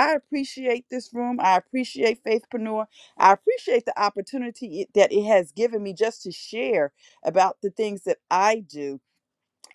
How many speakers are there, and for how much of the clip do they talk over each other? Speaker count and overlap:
one, no overlap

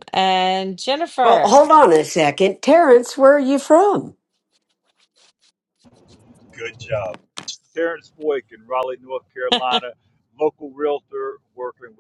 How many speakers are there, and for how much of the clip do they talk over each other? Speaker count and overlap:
three, about 2%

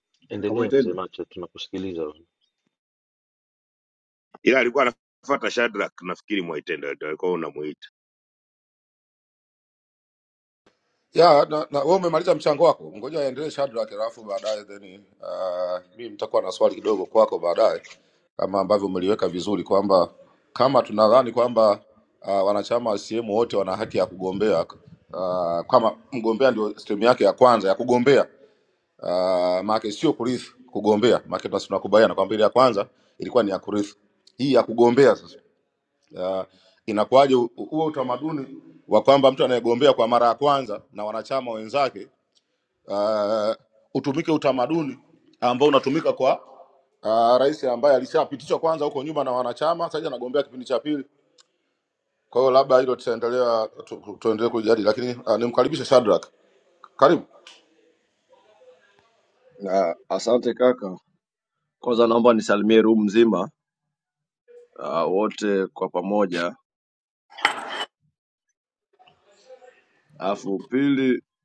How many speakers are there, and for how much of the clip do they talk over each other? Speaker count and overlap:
four, no overlap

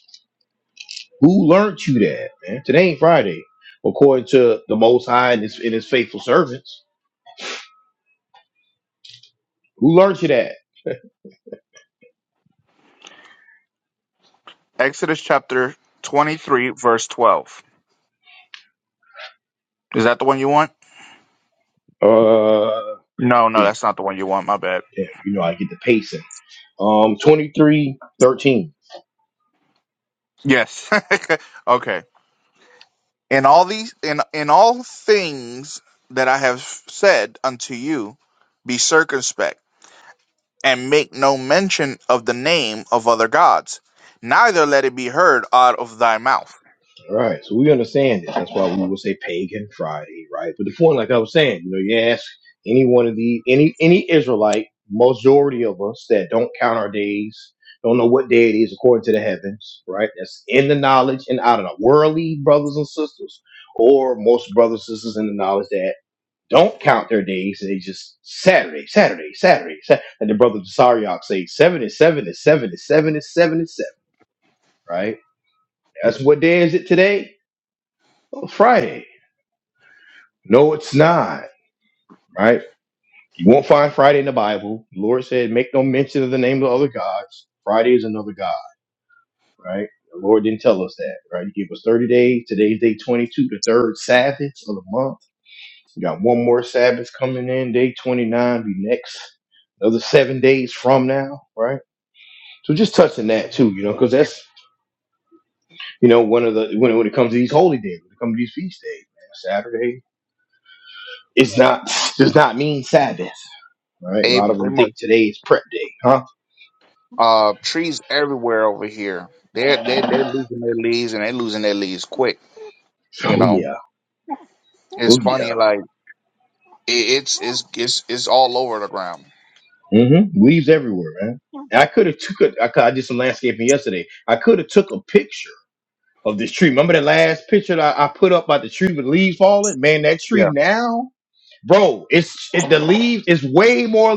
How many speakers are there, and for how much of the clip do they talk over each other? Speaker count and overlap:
two, about 1%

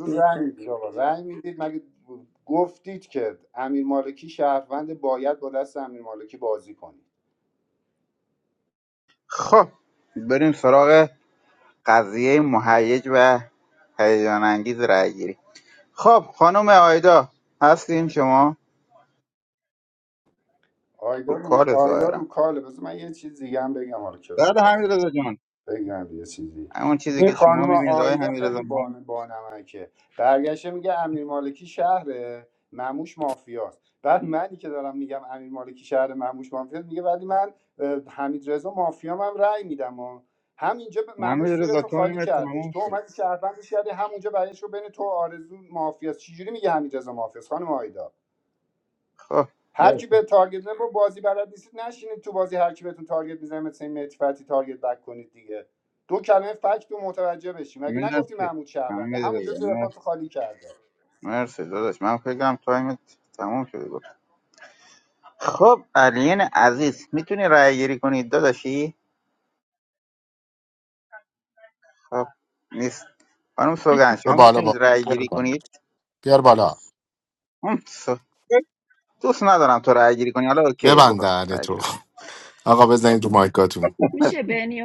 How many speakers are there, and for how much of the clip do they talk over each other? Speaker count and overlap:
four, about 10%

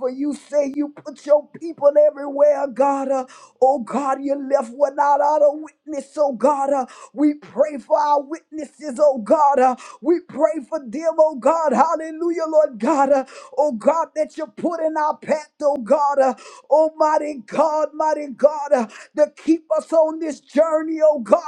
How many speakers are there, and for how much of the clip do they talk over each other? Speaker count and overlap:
one, no overlap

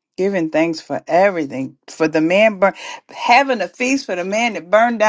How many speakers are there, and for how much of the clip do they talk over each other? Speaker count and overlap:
one, no overlap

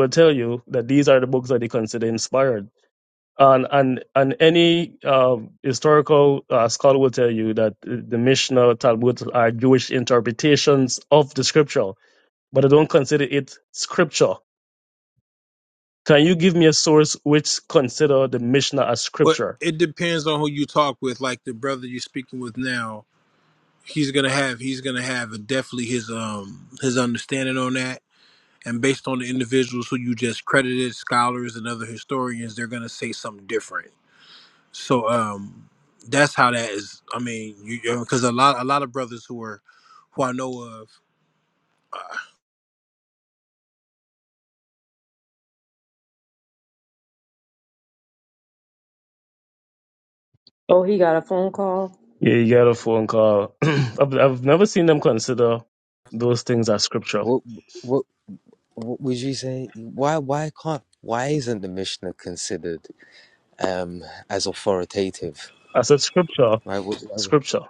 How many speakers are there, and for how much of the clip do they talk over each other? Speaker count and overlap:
four, under 1%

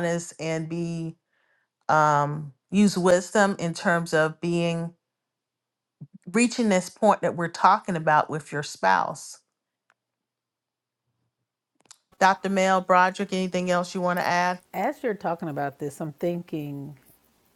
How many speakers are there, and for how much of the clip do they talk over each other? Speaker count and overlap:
two, no overlap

